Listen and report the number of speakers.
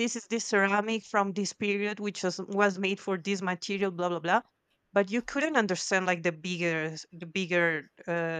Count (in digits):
1